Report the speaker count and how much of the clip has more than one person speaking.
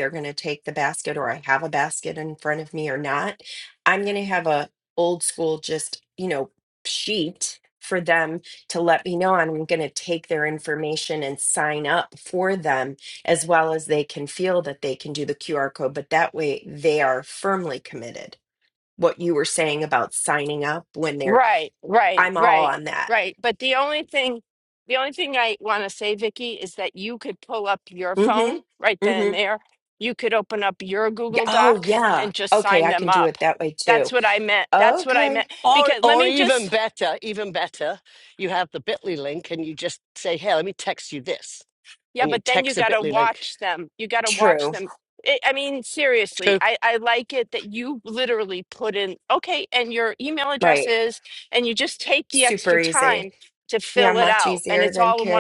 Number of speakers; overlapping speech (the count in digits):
3, about 19%